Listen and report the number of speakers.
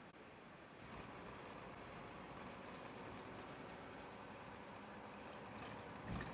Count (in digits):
0